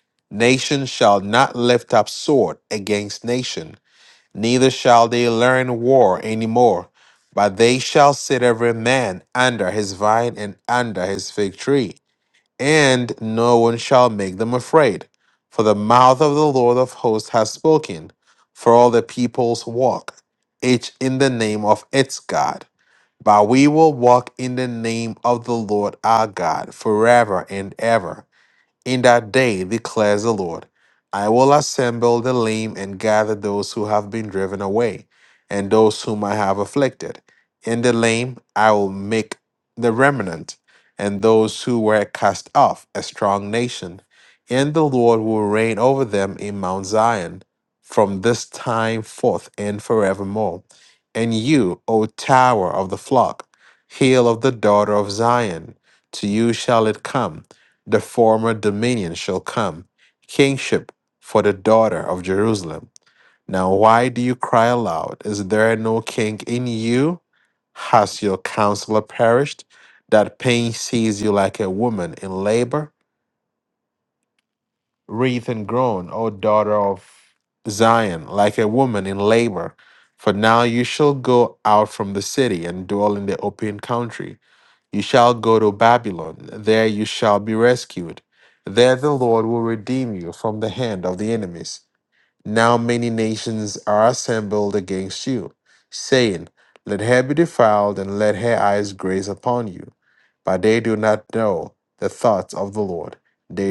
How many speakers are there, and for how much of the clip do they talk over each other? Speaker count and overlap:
1, no overlap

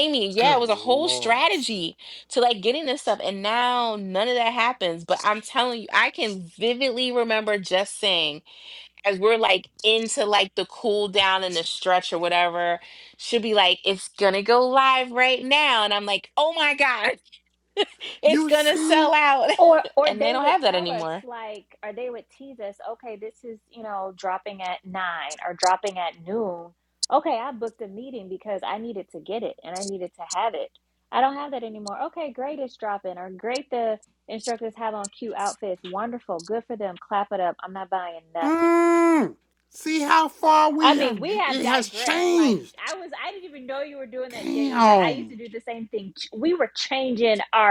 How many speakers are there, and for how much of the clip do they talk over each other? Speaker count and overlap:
3, about 13%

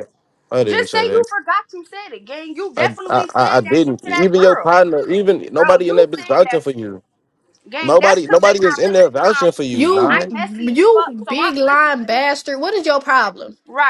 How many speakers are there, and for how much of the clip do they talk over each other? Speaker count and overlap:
3, about 59%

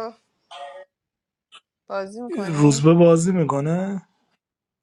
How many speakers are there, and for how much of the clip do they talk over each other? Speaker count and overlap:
2, about 9%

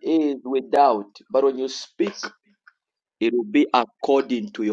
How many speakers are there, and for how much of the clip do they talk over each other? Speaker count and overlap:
1, no overlap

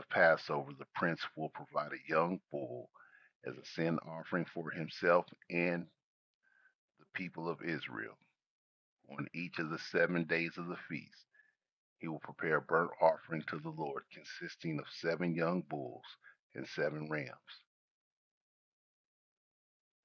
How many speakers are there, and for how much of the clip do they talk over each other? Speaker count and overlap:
1, no overlap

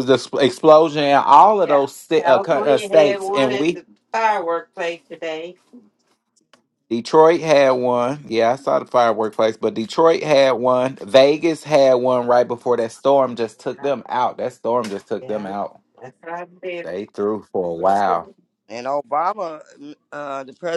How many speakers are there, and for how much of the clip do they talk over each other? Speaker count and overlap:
3, about 12%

